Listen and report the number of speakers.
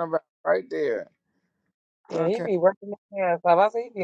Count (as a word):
two